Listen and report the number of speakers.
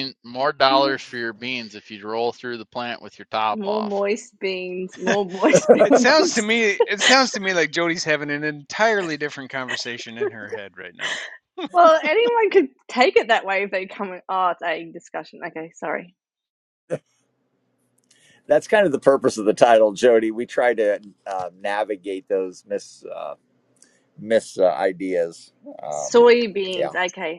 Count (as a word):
four